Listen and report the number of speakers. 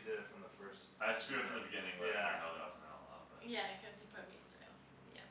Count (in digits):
3